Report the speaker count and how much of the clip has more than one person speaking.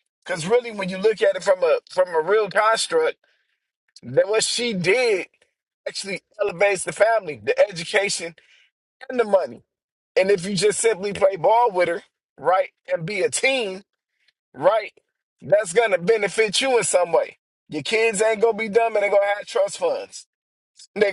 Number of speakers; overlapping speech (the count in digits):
1, no overlap